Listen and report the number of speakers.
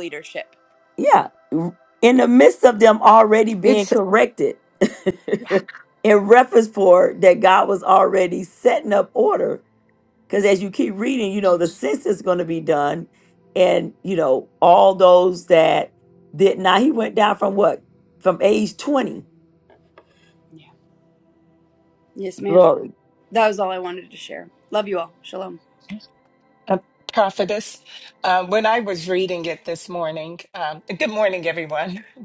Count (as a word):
three